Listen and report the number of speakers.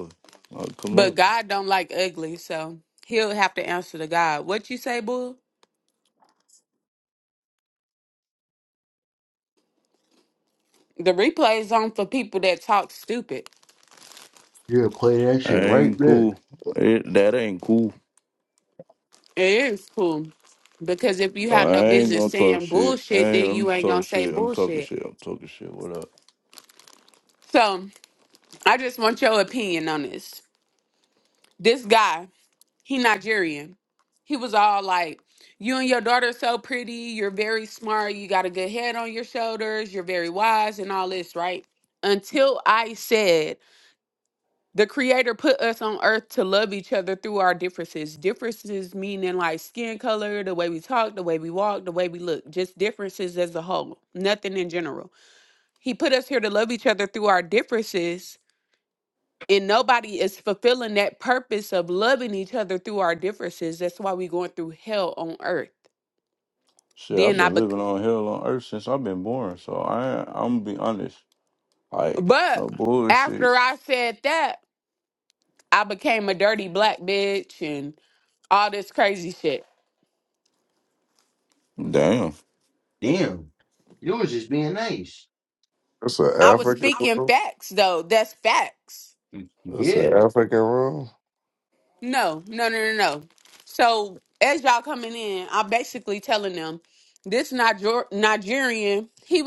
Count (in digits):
4